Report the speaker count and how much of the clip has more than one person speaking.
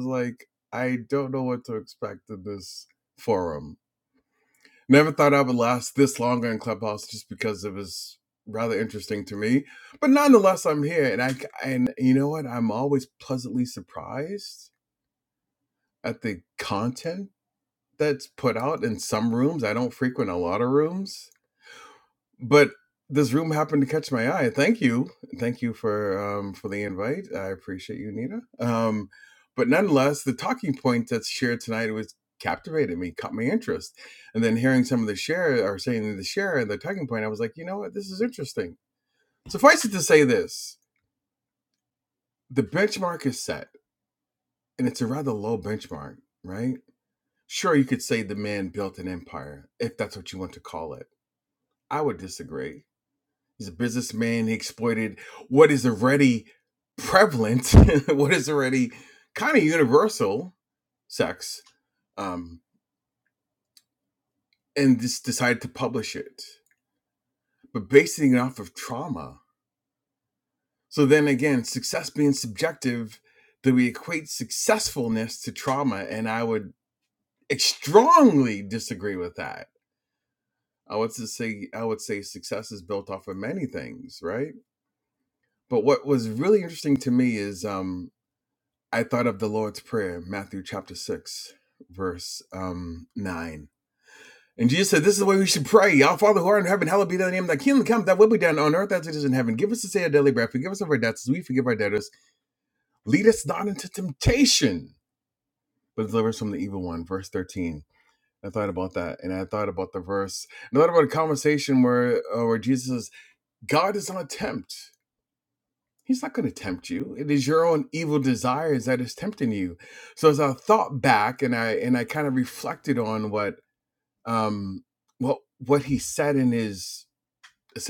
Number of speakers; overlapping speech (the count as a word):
one, no overlap